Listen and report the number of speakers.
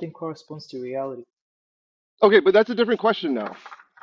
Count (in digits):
2